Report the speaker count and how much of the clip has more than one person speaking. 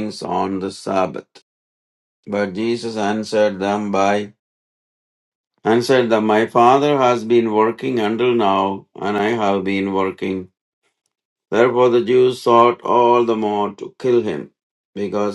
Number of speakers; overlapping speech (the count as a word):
one, no overlap